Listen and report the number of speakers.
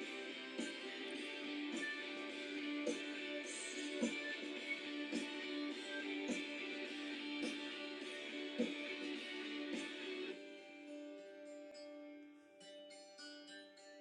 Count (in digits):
0